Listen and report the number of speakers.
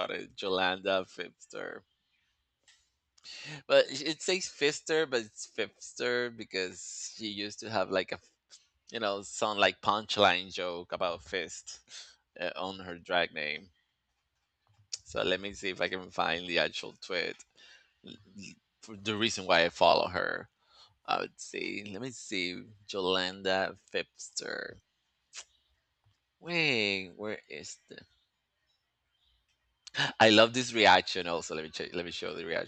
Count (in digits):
1